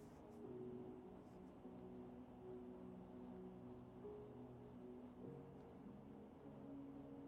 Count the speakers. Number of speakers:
0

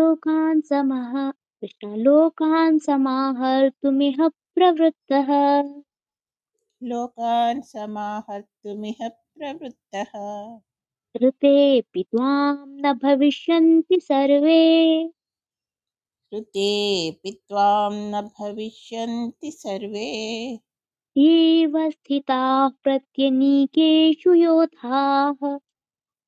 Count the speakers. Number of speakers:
2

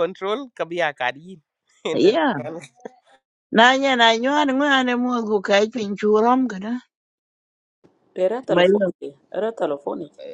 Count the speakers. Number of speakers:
3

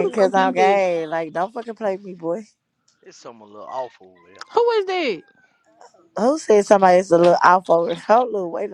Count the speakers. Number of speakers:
3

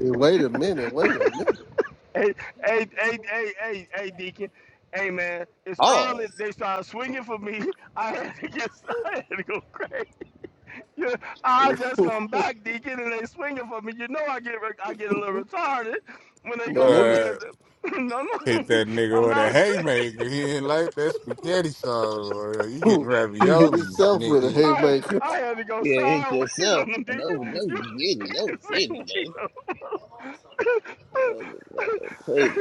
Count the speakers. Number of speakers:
4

